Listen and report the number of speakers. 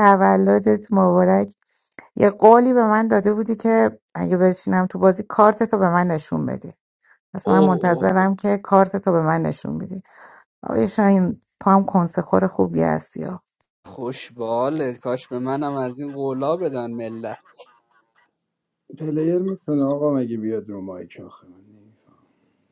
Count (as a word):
three